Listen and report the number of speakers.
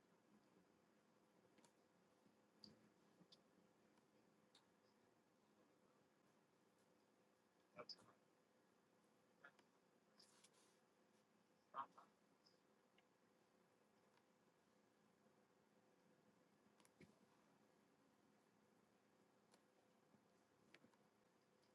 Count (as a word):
zero